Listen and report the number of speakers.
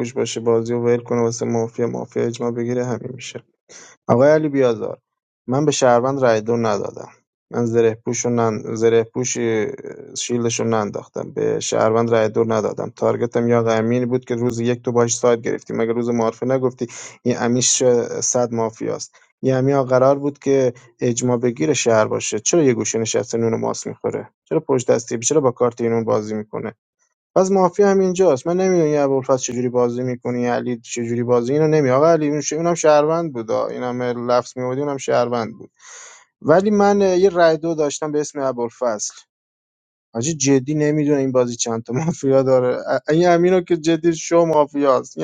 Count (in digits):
1